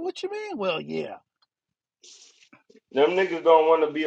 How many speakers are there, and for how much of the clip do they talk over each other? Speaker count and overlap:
two, no overlap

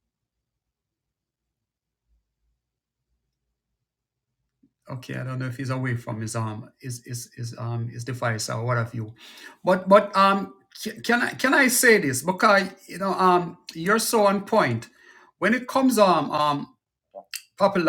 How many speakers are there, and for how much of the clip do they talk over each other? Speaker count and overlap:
one, no overlap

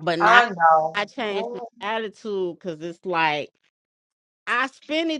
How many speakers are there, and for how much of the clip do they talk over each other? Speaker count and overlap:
two, about 19%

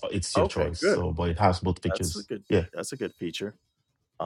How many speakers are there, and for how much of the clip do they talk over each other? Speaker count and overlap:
two, about 23%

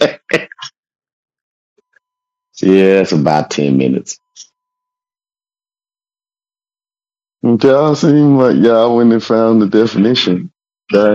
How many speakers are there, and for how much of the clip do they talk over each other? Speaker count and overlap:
one, no overlap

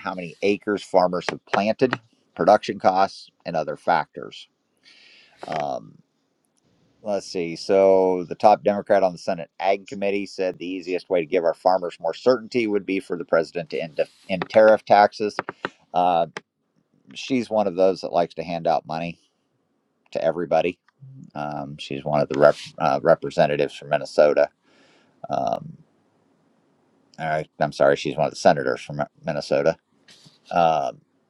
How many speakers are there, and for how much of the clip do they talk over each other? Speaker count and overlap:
one, no overlap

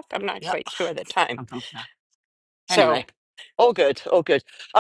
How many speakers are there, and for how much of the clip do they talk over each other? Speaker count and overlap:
two, about 8%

